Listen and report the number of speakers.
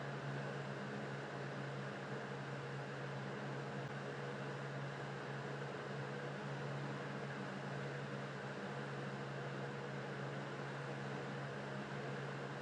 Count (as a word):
zero